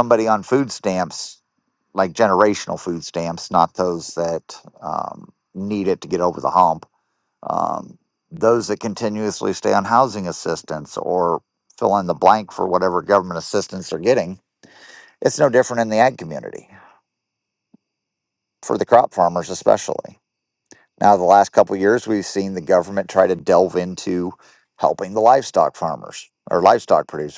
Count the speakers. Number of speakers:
1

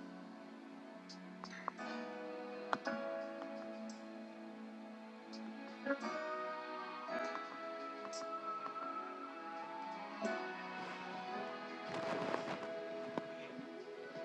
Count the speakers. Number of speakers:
0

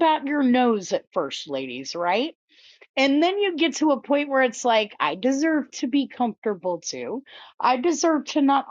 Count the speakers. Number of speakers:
1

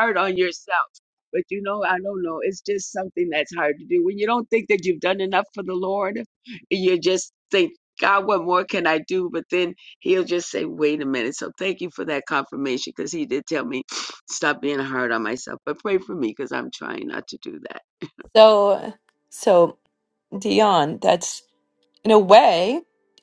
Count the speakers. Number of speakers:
2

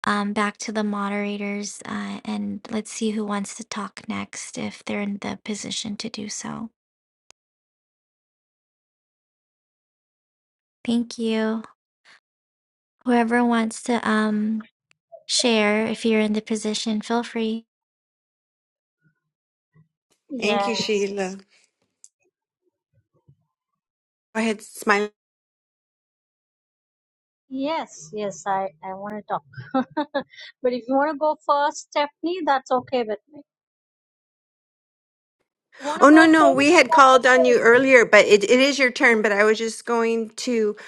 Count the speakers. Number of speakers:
3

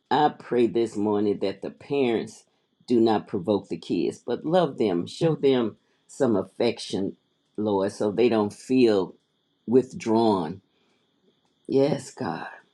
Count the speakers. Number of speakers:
1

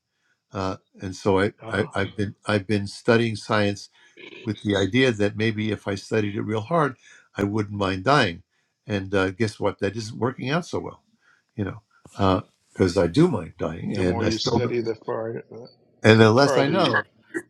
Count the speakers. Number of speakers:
2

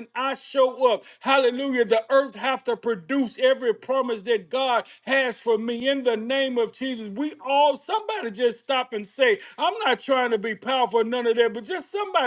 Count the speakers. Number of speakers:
1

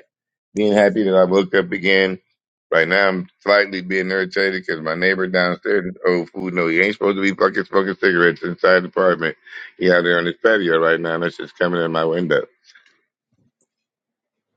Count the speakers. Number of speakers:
1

